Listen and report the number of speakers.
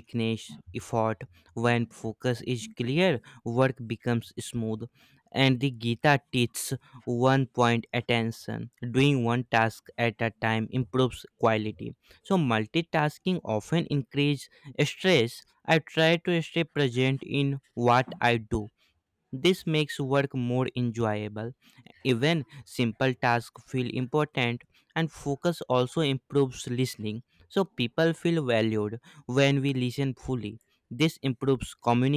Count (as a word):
one